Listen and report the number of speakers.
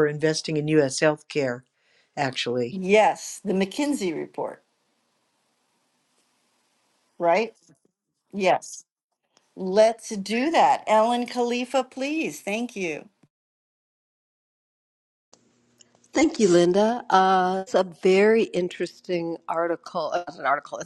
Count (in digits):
3